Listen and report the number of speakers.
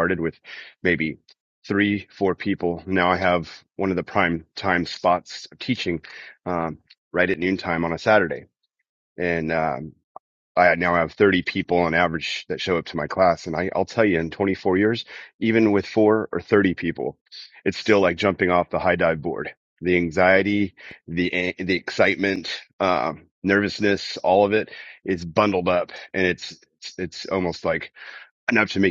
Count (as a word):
one